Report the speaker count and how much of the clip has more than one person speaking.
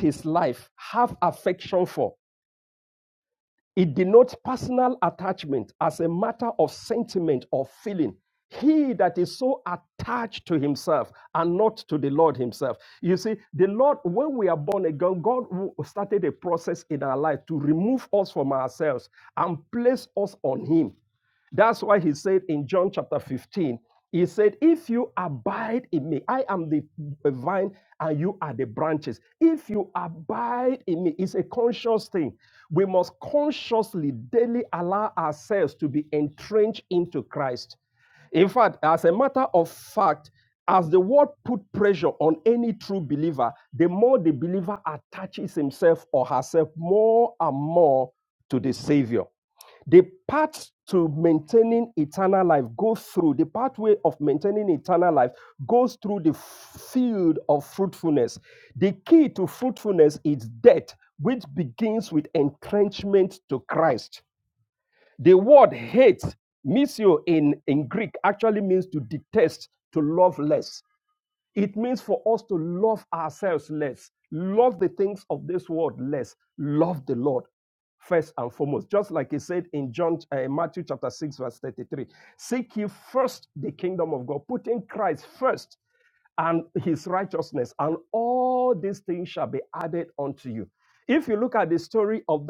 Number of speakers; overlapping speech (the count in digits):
1, no overlap